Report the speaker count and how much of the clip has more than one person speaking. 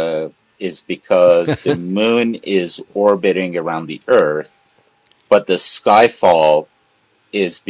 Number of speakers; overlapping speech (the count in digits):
1, no overlap